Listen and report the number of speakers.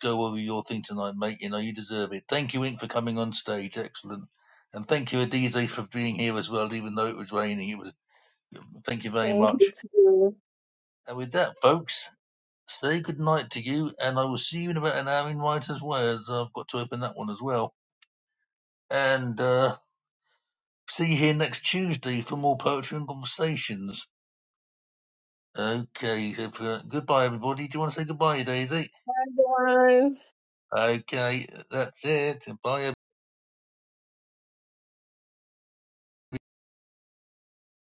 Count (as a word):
two